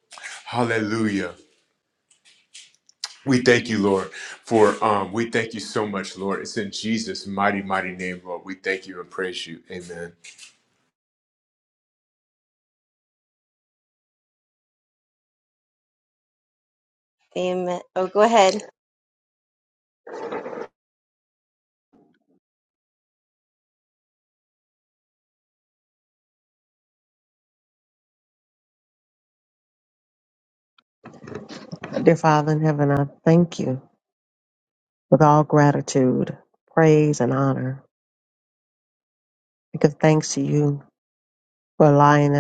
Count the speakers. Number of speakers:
3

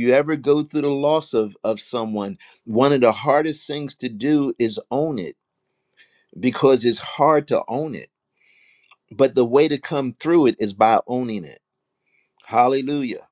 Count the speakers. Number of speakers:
1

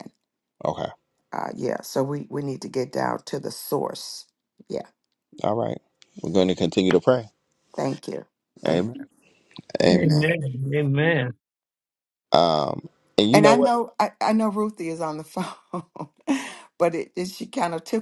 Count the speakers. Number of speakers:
3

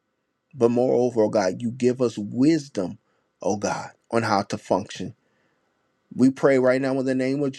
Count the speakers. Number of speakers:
1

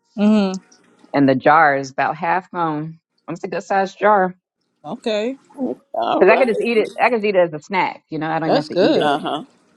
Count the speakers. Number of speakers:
3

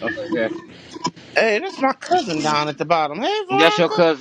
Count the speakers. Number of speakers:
2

